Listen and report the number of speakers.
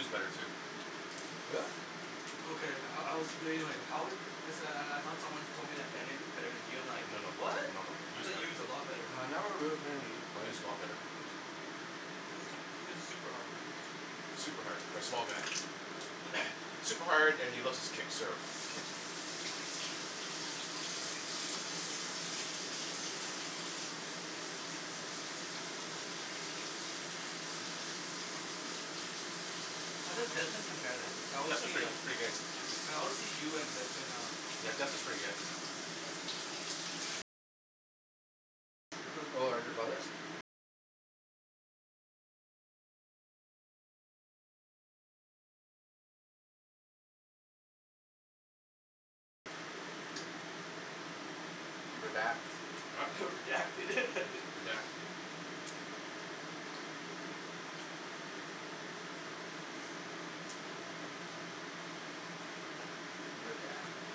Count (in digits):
3